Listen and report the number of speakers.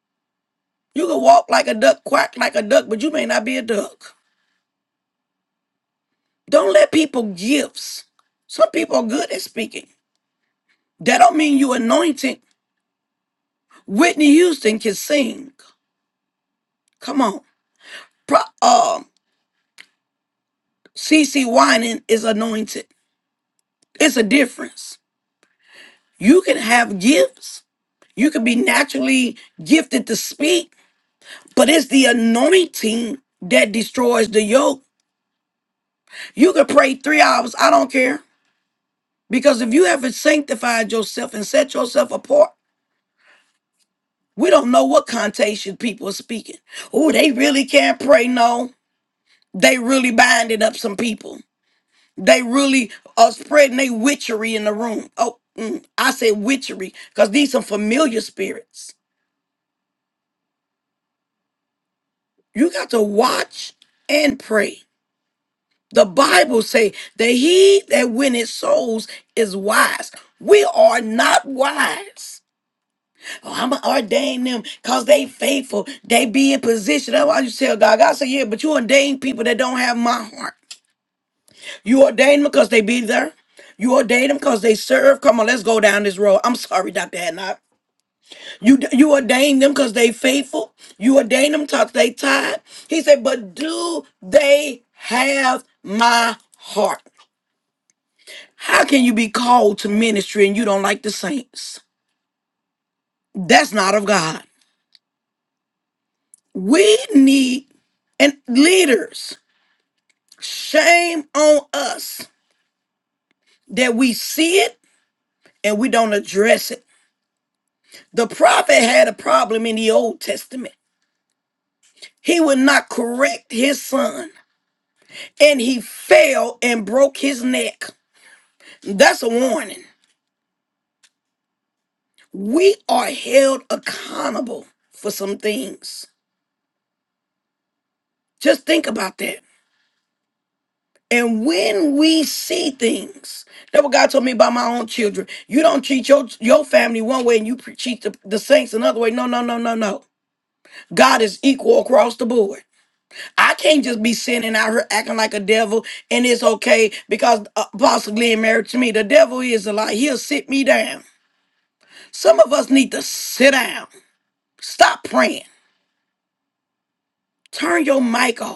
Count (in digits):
1